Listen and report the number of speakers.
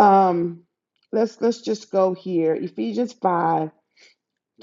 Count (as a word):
one